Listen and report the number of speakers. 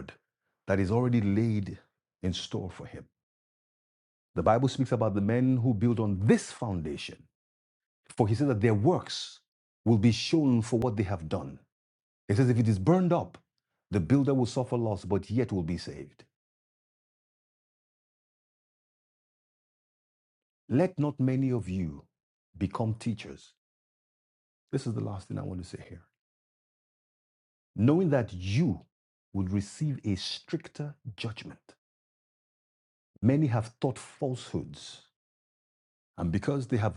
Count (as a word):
one